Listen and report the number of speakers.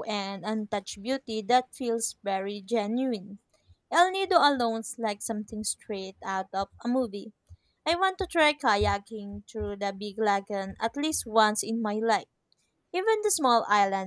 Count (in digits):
1